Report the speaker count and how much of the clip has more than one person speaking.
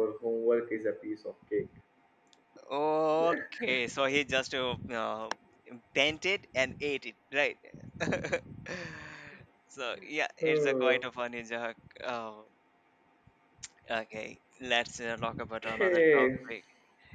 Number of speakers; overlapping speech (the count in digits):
2, about 8%